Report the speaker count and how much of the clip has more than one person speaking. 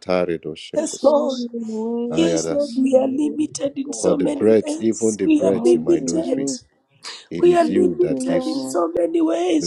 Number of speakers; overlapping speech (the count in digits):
3, about 63%